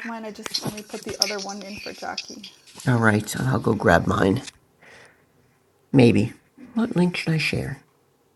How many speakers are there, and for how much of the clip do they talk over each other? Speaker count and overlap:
2, no overlap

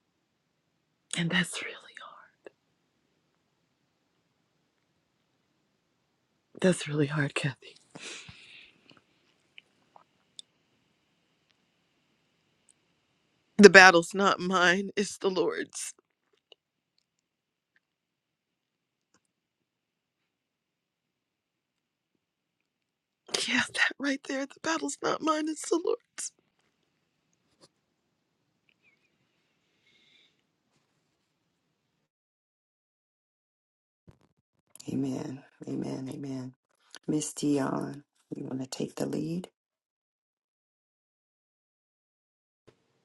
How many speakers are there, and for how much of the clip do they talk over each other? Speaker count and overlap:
2, no overlap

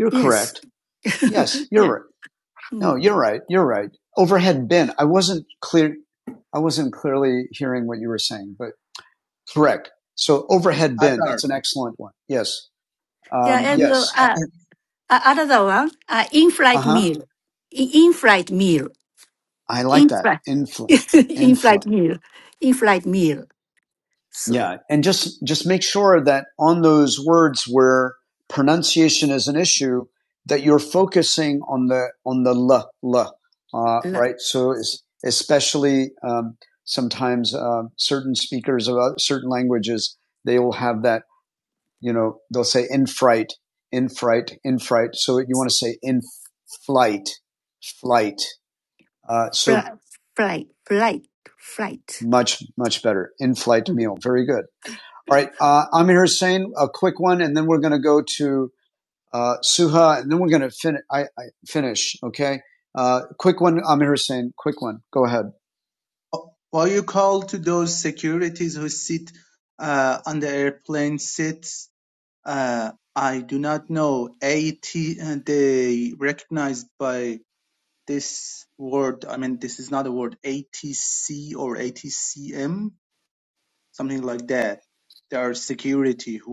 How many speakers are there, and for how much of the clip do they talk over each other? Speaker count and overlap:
3, about 4%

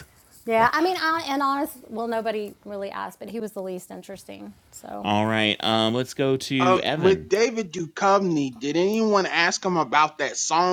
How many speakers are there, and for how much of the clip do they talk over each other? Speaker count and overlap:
3, about 7%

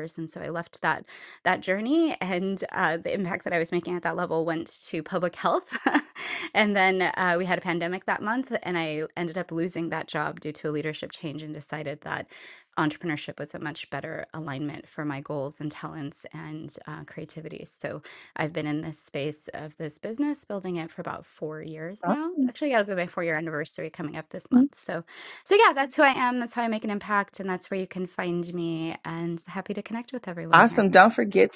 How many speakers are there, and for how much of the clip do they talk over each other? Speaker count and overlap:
2, about 2%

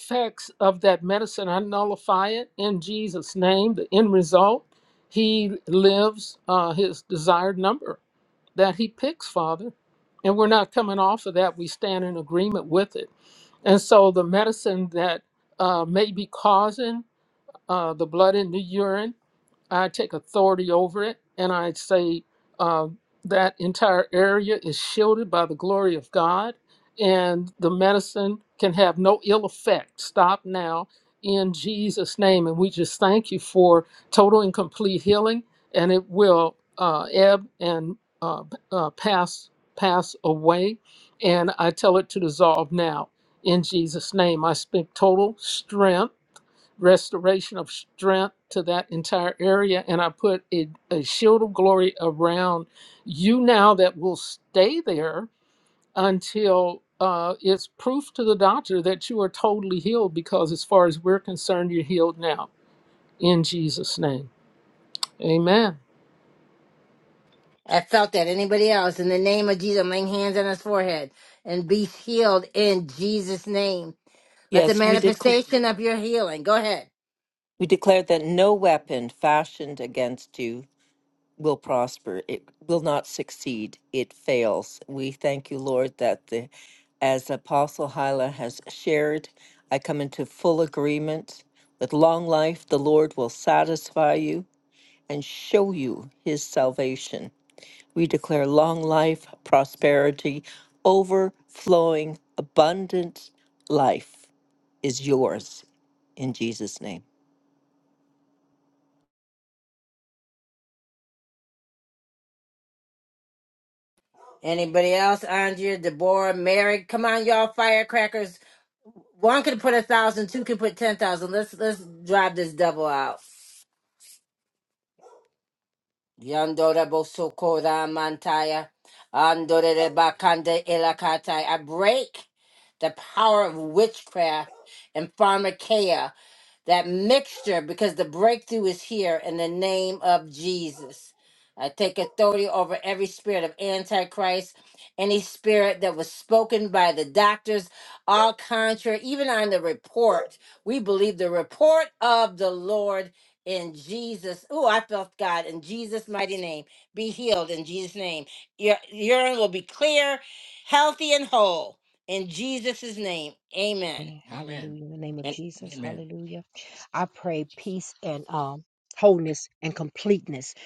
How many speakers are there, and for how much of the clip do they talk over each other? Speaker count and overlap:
4, under 1%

